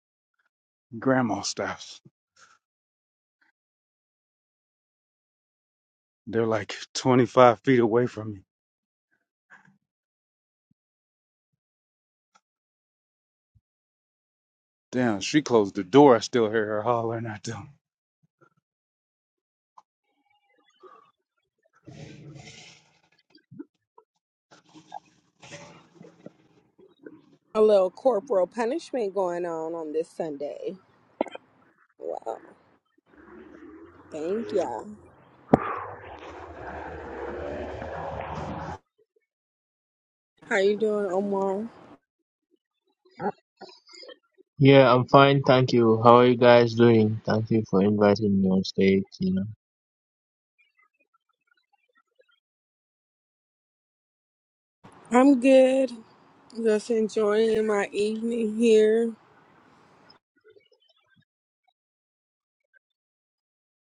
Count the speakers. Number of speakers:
3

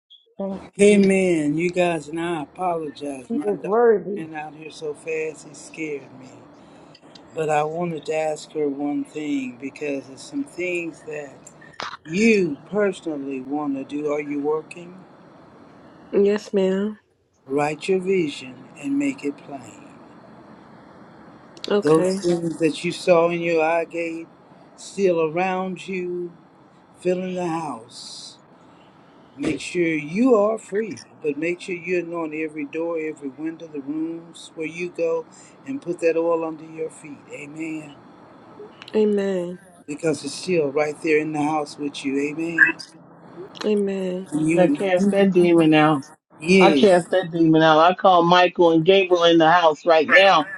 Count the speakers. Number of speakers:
4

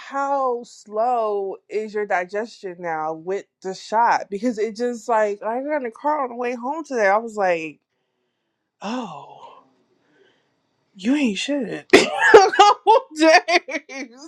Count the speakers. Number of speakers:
1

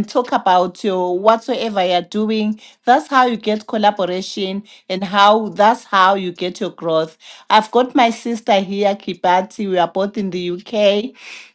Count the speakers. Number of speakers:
1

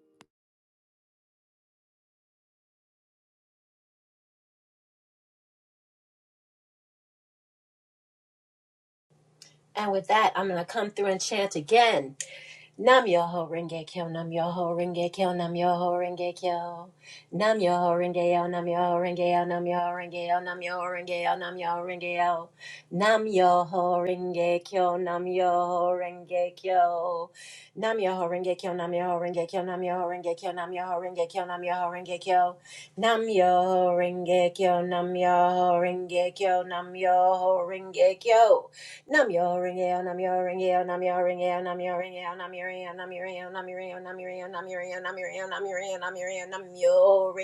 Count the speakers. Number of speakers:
1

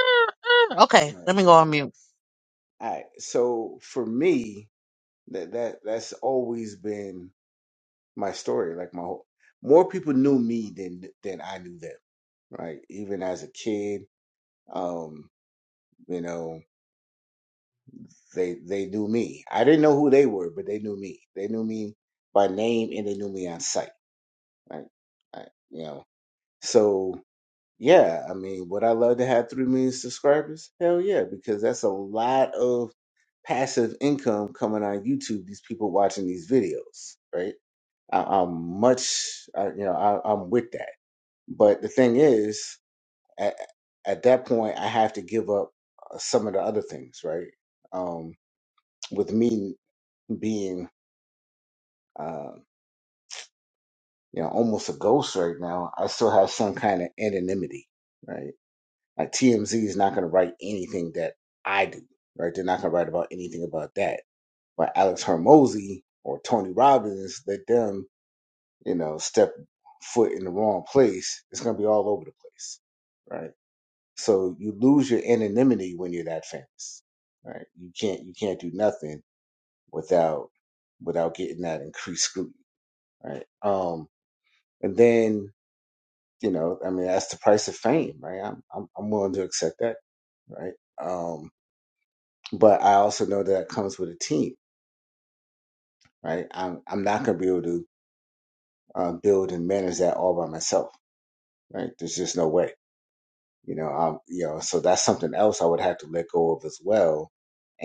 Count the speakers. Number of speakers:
2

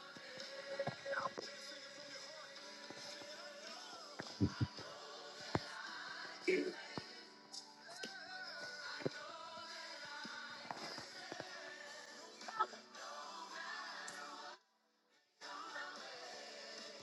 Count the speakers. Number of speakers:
0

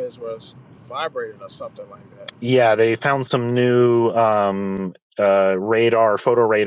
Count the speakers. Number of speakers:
2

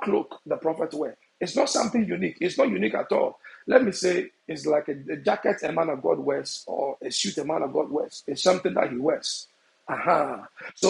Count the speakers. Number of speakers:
1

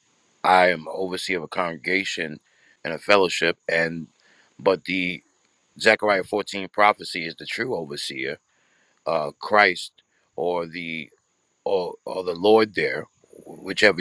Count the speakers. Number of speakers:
1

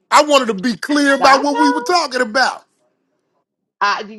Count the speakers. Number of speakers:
2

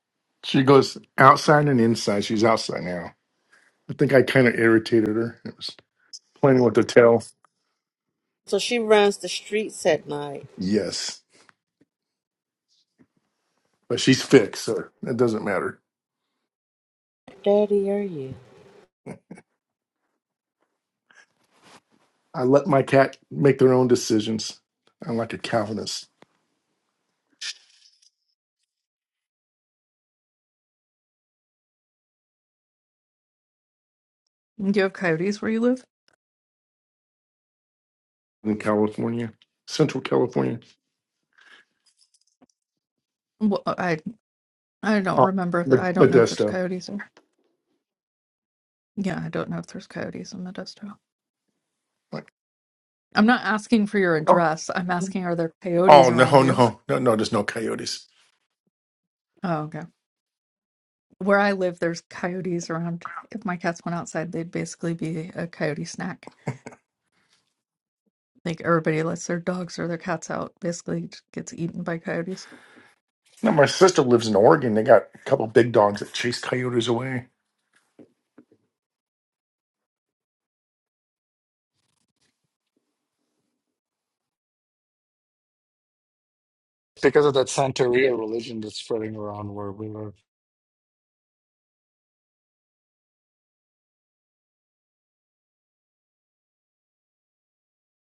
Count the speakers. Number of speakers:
4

